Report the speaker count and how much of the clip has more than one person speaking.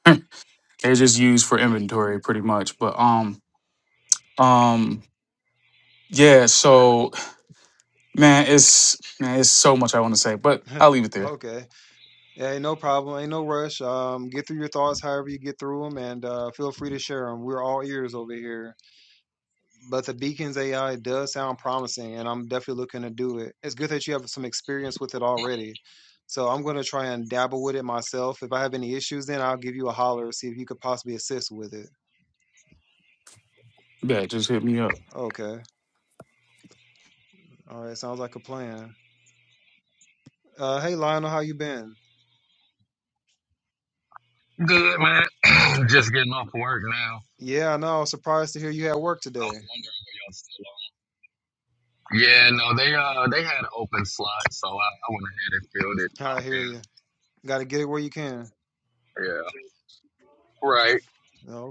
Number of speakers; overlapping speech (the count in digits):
3, about 1%